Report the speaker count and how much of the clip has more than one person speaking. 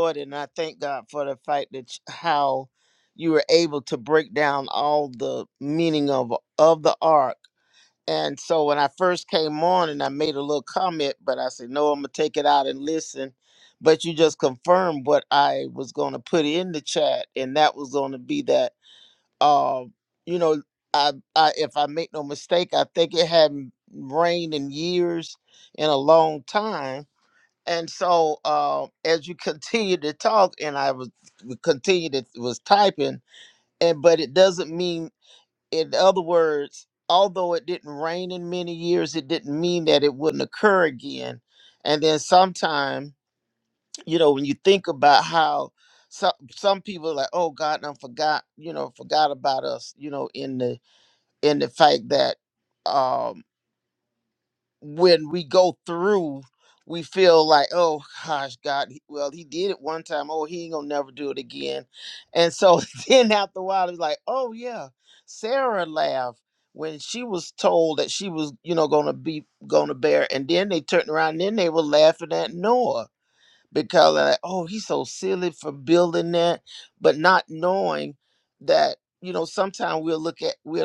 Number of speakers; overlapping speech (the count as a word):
one, no overlap